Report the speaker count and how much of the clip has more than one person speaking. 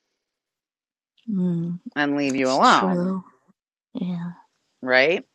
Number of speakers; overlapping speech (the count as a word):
two, about 15%